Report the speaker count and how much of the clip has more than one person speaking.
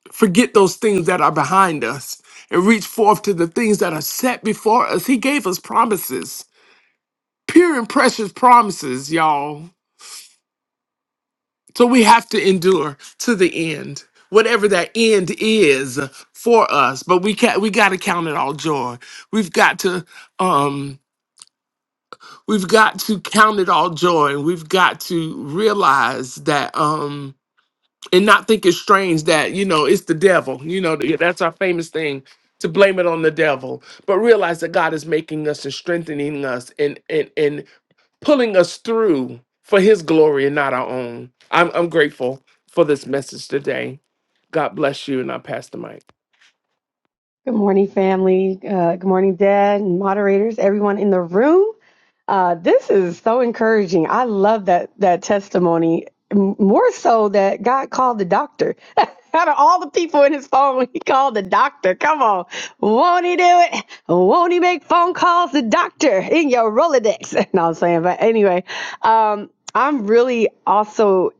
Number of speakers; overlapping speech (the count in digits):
2, no overlap